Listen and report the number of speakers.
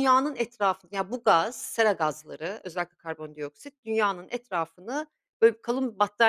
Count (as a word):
one